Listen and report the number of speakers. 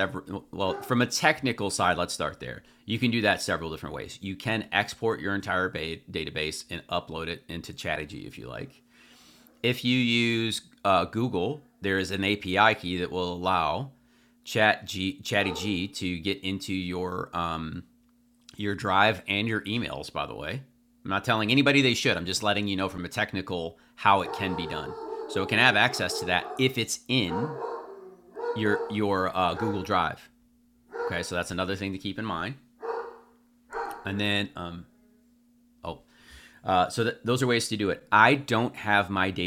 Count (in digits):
1